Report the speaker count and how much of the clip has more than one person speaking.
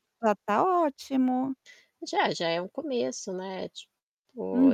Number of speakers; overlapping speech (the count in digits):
2, about 5%